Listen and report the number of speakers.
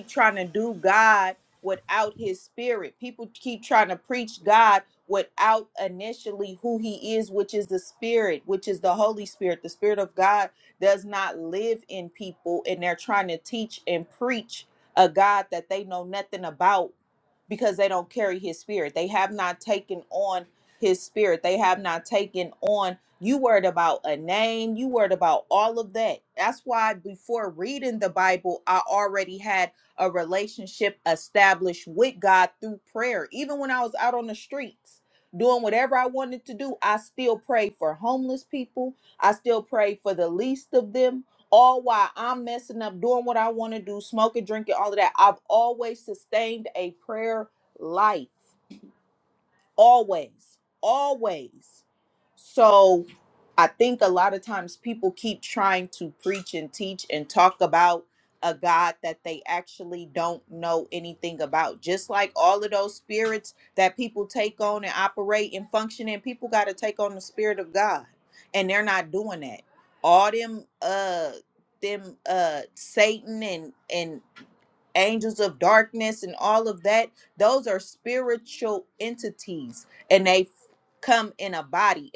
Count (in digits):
1